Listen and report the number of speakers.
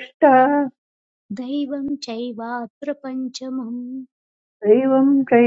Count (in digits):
2